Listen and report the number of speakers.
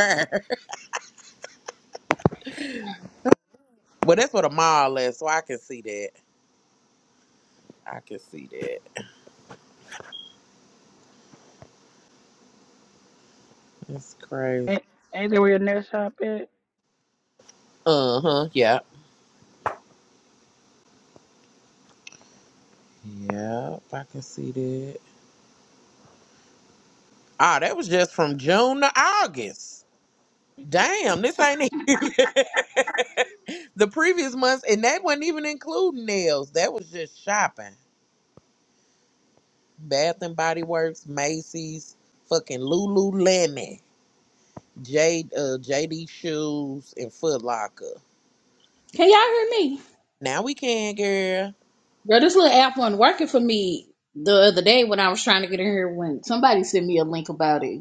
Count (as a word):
three